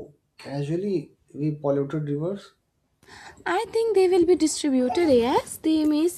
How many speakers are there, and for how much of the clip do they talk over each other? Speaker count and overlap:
2, no overlap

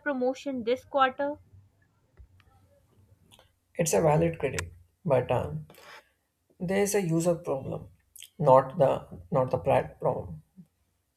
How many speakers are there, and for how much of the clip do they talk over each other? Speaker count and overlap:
2, no overlap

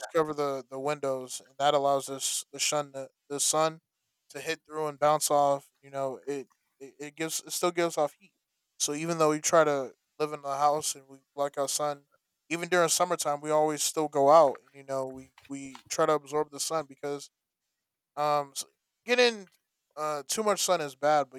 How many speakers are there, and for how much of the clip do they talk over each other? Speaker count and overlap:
1, no overlap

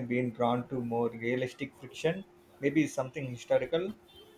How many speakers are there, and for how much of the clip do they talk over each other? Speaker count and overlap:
1, no overlap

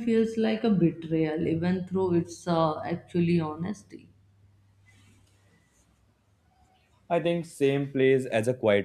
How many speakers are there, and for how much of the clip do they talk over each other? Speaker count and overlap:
2, no overlap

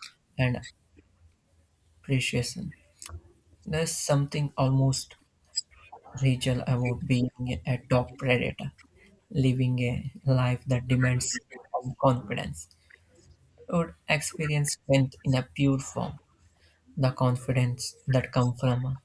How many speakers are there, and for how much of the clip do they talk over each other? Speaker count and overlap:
1, no overlap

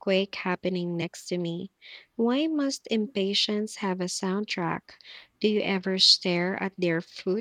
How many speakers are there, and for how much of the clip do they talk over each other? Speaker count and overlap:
1, no overlap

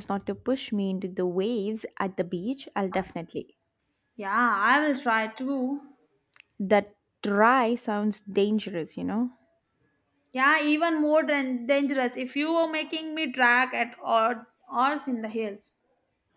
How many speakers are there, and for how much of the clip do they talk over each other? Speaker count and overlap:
2, no overlap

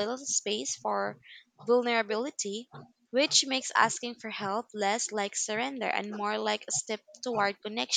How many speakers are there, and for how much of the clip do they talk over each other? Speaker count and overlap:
1, no overlap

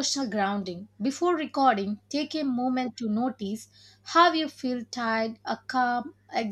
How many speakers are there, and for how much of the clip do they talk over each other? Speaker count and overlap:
1, no overlap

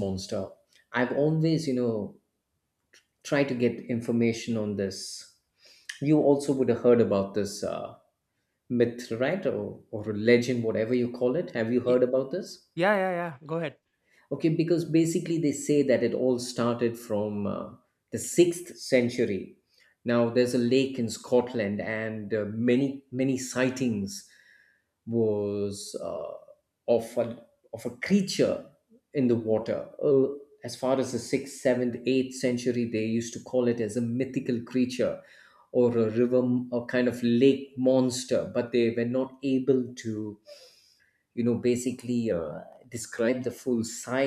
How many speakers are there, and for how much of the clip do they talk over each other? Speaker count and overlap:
2, under 1%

